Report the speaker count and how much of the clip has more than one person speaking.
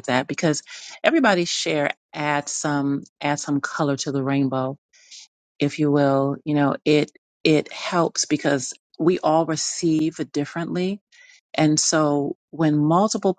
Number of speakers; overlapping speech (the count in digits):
1, no overlap